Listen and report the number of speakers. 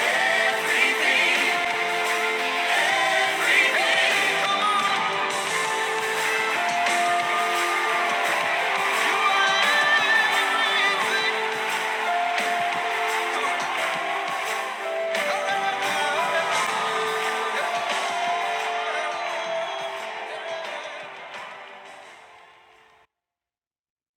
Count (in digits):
0